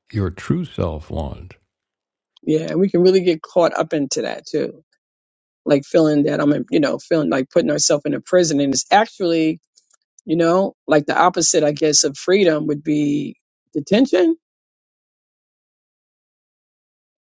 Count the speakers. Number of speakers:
two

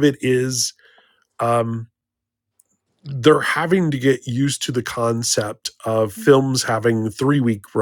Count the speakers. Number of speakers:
one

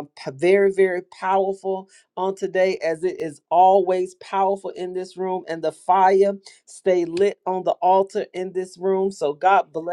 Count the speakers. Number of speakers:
one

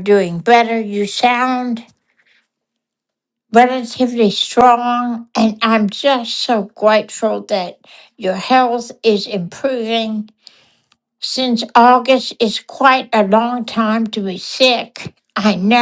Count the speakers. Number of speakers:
one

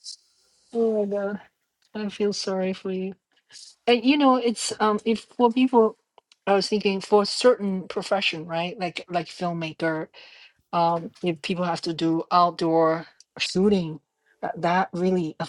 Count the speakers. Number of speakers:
one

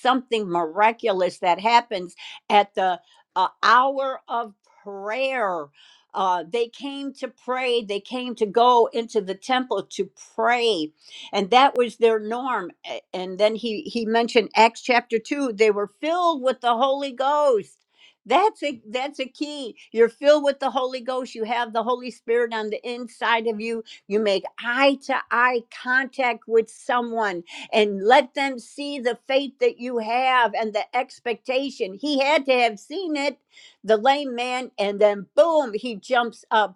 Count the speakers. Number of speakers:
one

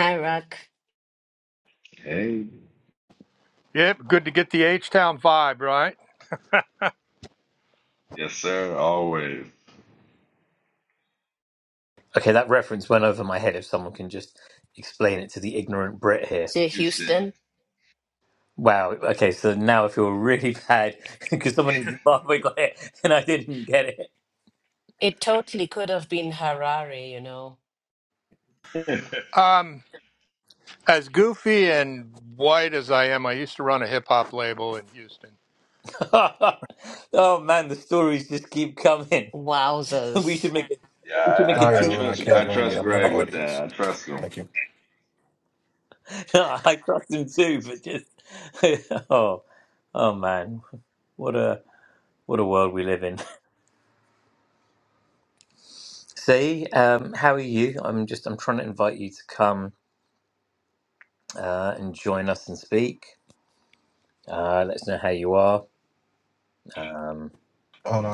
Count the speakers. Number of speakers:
five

